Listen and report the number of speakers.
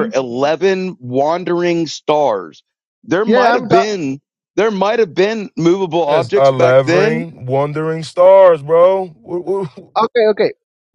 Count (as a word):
three